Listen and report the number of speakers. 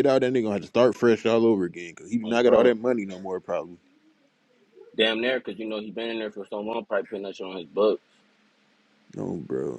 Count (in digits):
2